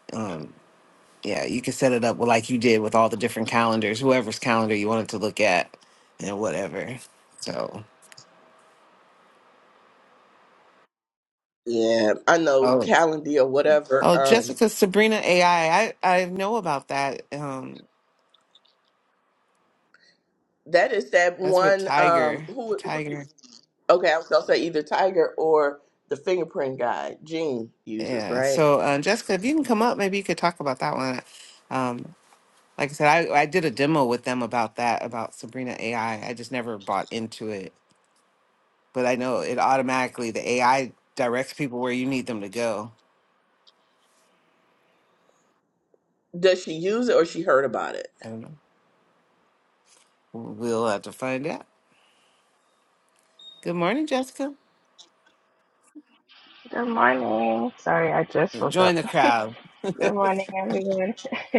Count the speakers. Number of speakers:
3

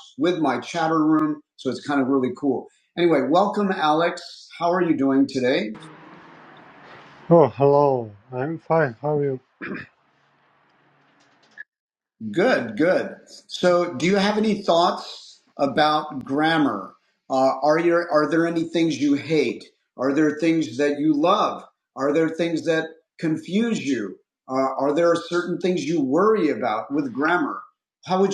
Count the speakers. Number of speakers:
2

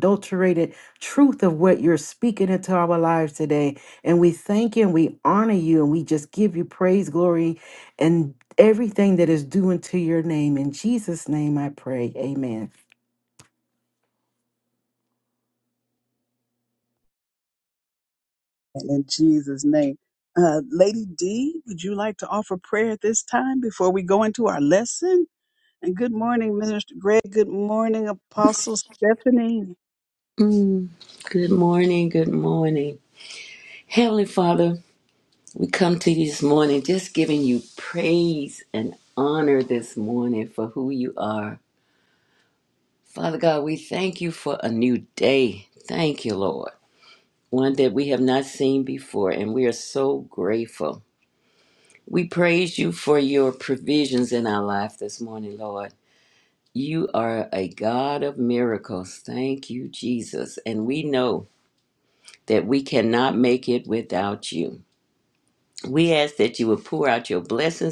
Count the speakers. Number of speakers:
3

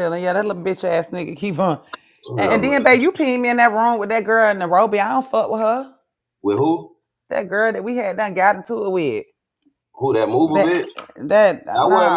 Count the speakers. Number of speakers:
2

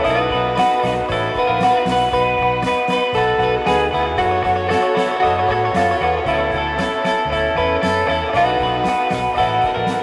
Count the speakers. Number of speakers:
0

